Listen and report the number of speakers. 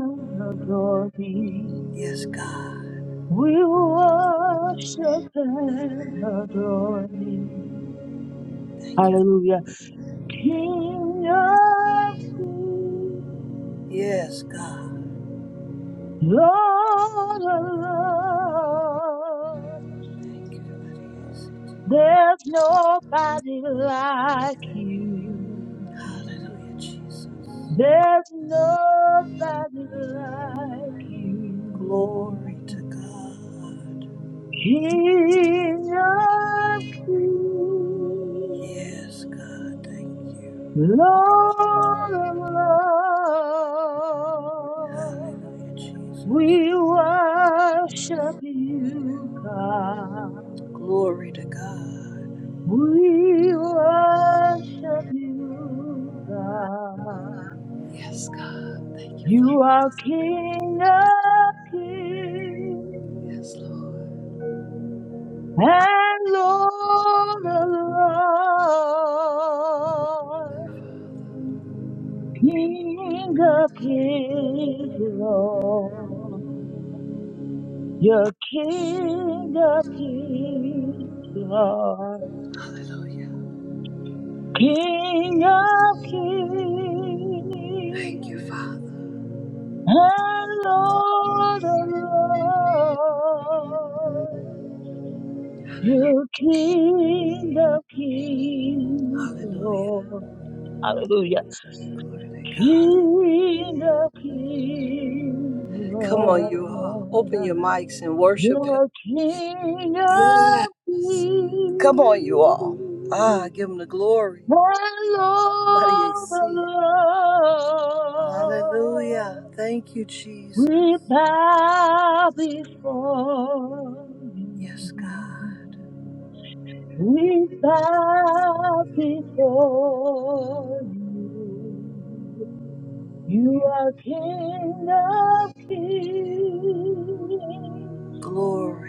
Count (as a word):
two